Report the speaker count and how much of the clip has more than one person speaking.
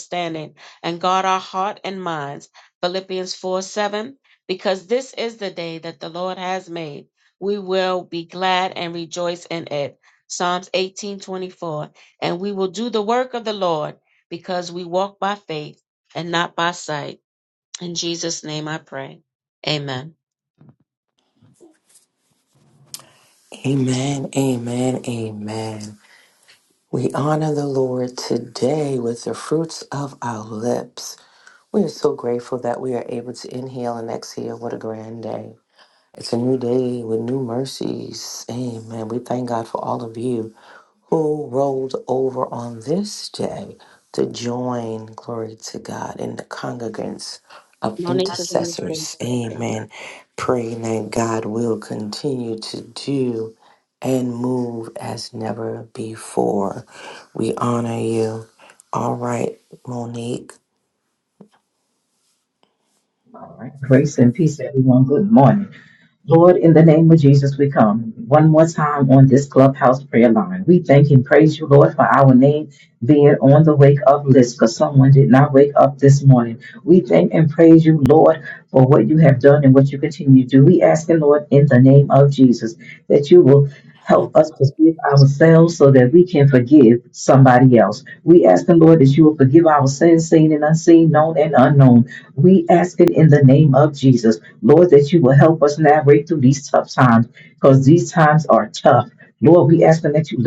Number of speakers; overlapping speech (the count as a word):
three, about 2%